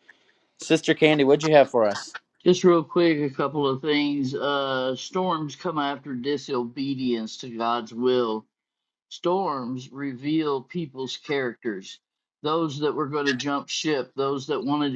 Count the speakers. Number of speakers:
2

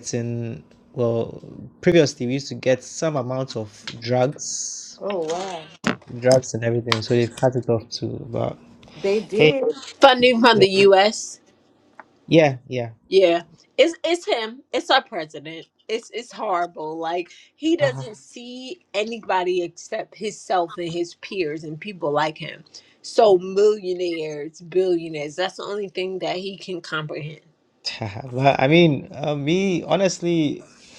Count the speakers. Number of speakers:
3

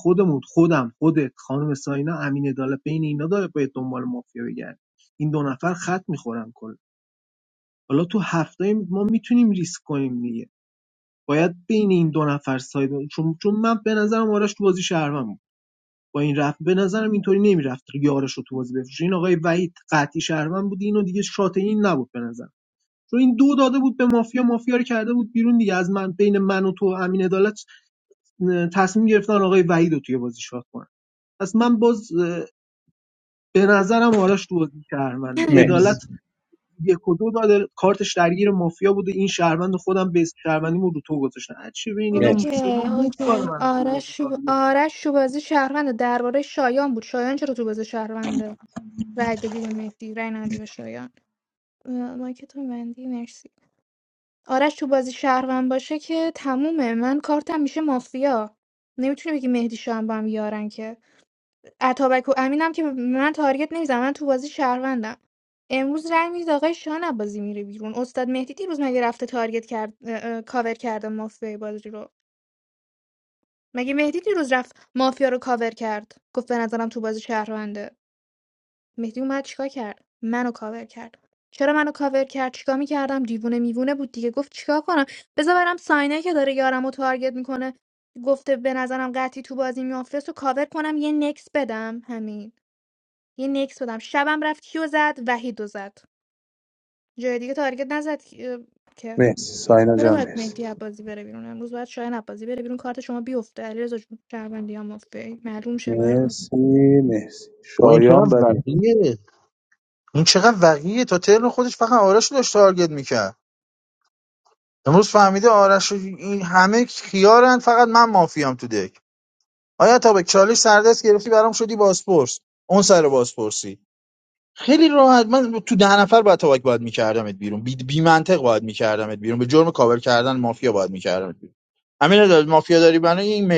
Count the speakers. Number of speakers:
4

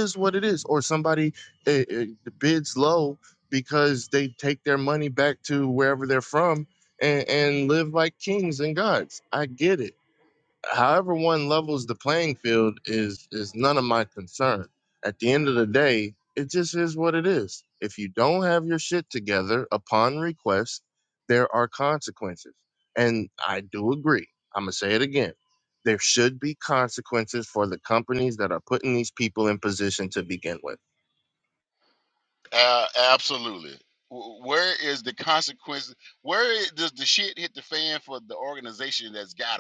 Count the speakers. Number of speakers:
2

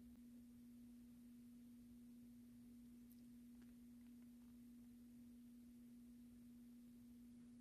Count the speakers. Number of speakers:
0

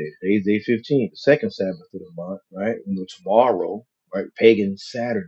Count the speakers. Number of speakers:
1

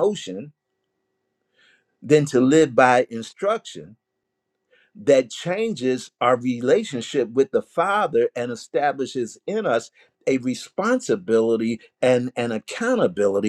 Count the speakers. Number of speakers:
1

